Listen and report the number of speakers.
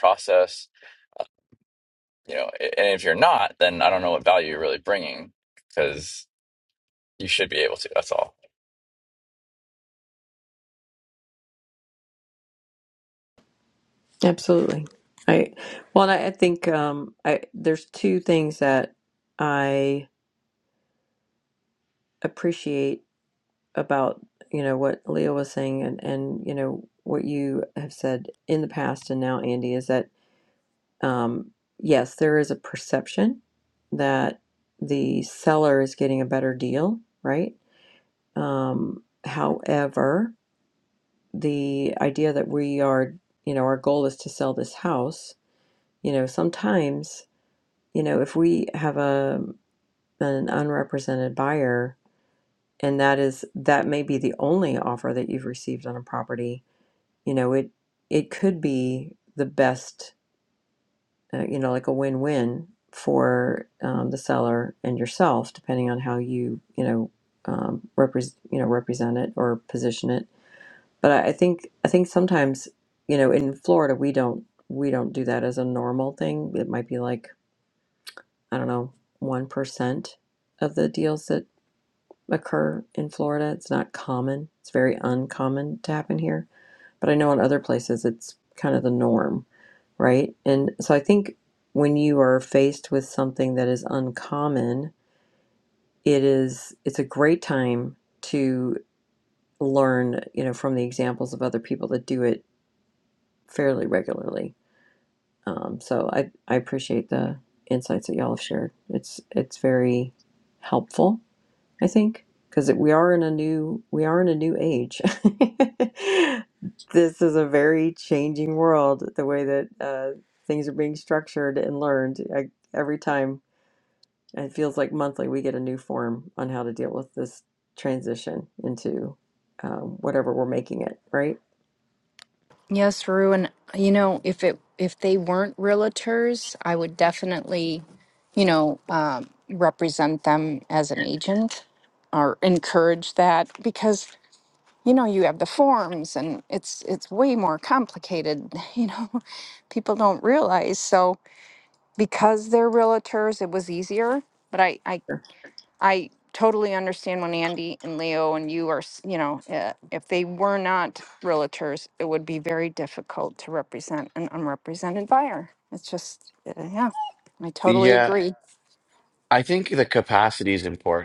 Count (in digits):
4